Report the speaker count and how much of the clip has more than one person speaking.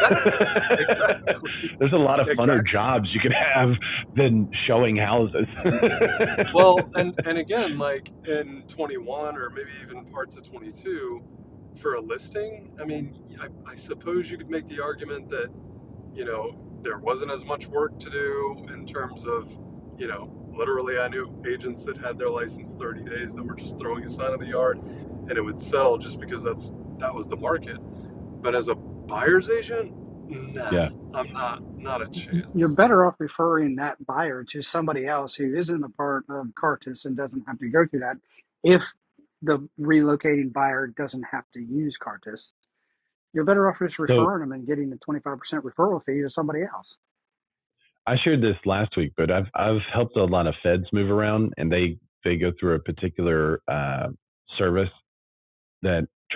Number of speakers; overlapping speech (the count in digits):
3, about 3%